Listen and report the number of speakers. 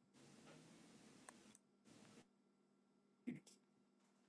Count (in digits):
0